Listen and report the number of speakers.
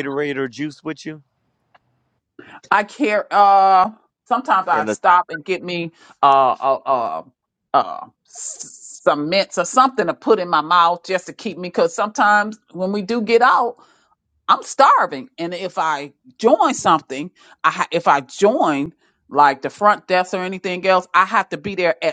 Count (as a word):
two